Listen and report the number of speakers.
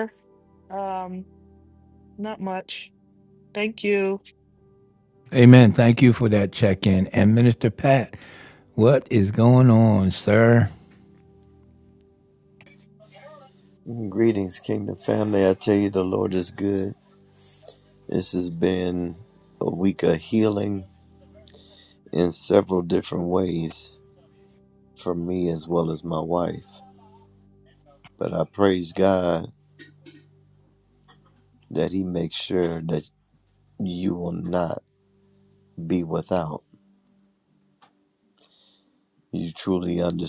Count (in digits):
3